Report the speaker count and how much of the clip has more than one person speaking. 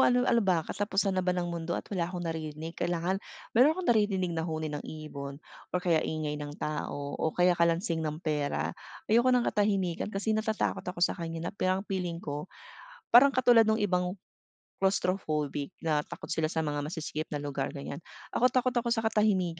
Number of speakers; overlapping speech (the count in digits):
1, no overlap